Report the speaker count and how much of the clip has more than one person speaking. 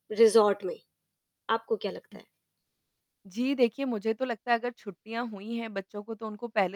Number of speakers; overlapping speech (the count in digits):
2, no overlap